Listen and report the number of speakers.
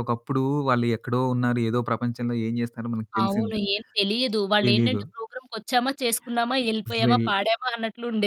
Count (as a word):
two